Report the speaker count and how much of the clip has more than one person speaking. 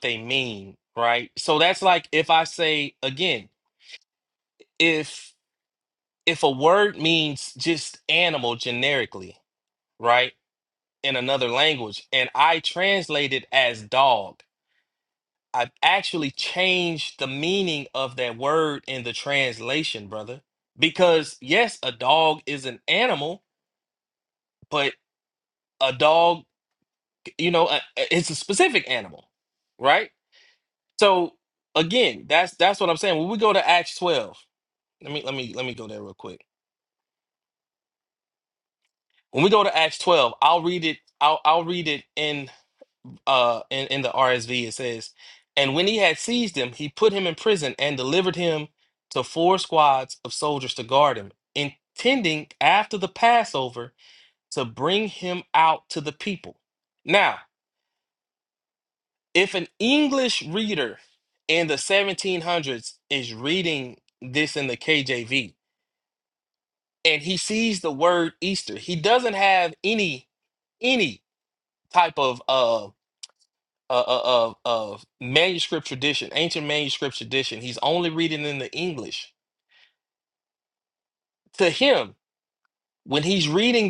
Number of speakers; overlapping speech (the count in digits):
1, no overlap